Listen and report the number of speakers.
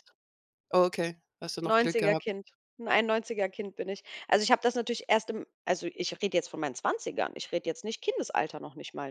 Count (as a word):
two